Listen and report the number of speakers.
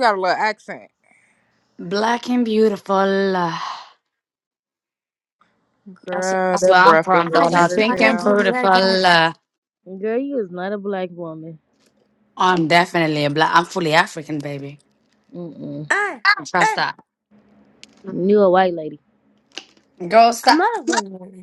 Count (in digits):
4